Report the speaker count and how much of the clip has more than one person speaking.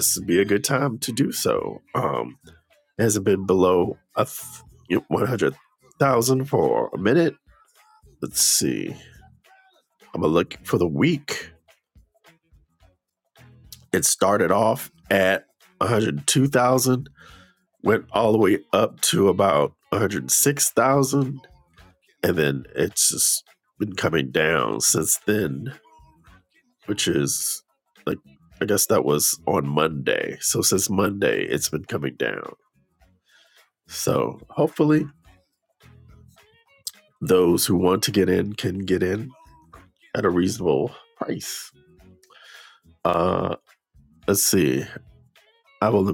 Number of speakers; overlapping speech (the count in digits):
1, no overlap